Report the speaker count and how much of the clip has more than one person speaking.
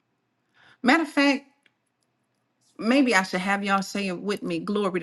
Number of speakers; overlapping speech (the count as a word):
one, no overlap